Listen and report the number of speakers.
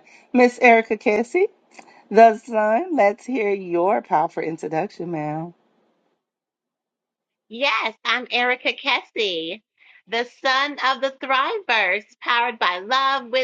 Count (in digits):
2